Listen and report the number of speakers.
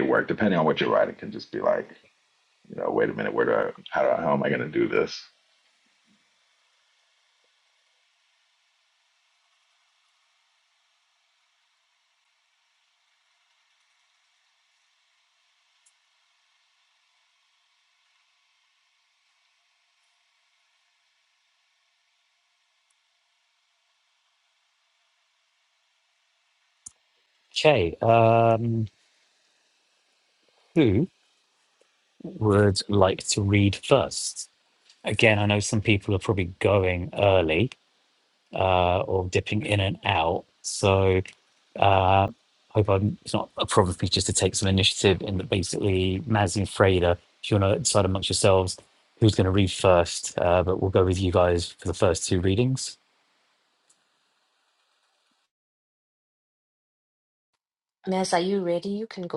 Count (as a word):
three